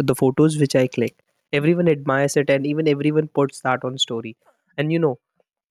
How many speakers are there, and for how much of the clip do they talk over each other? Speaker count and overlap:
1, no overlap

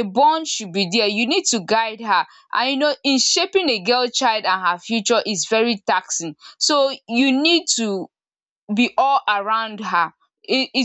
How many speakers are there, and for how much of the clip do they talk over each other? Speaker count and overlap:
1, no overlap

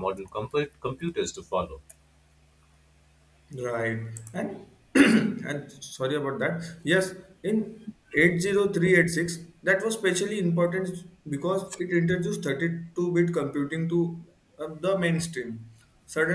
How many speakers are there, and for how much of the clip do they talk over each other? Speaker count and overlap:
2, no overlap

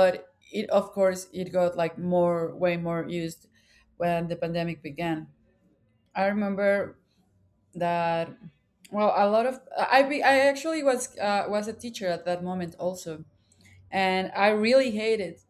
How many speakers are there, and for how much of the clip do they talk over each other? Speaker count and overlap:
1, no overlap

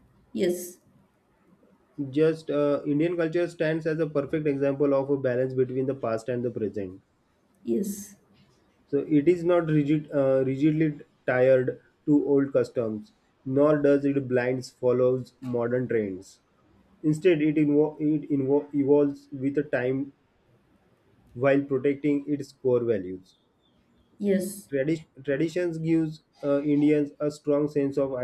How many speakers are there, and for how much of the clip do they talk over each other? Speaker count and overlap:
2, no overlap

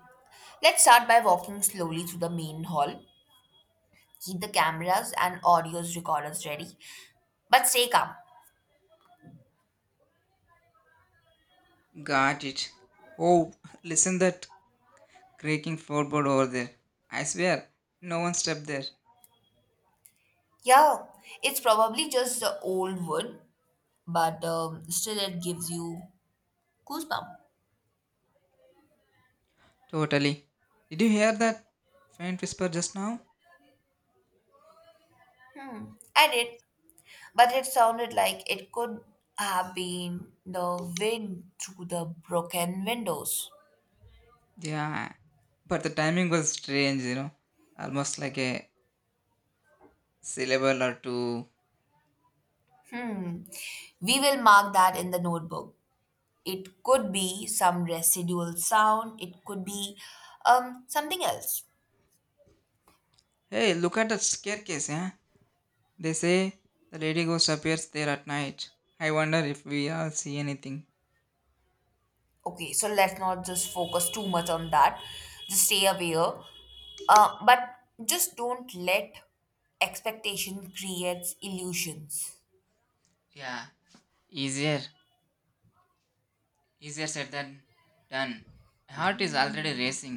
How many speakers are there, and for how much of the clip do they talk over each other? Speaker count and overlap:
2, no overlap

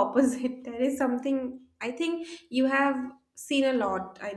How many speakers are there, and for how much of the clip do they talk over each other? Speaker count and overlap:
1, no overlap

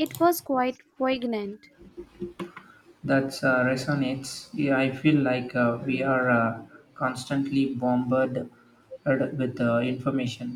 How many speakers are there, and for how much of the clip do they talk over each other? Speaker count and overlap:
2, no overlap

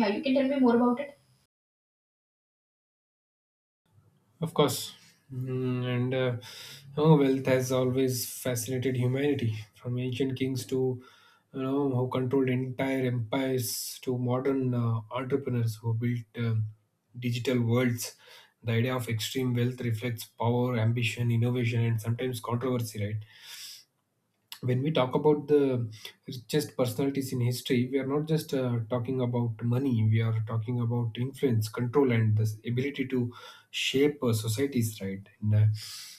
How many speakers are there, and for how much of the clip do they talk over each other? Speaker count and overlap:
2, no overlap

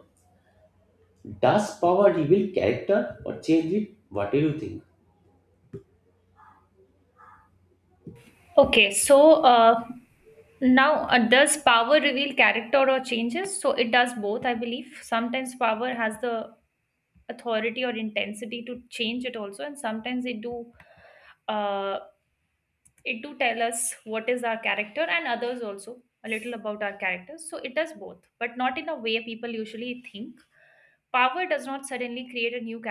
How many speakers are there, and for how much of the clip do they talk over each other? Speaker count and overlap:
2, no overlap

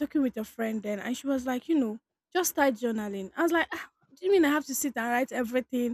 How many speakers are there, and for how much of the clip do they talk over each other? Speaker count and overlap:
1, no overlap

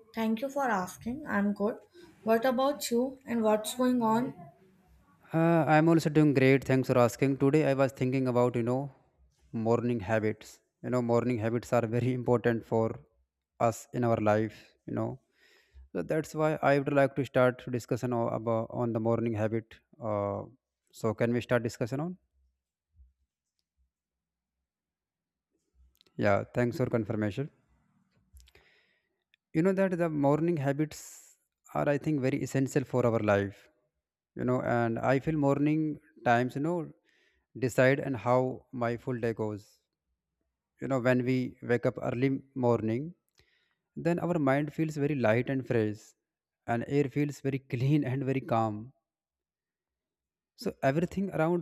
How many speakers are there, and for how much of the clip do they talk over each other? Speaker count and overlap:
2, no overlap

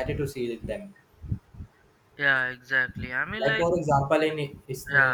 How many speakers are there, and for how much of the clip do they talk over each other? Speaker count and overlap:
2, about 12%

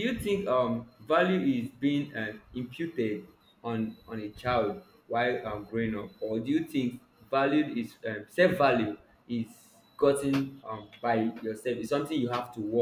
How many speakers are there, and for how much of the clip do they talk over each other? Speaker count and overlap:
1, no overlap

